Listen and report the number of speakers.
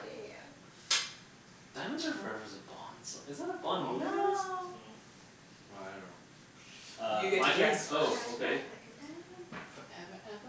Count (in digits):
3